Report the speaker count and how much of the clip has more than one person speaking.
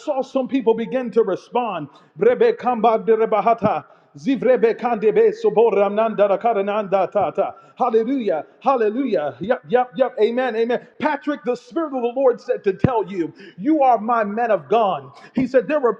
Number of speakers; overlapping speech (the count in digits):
1, no overlap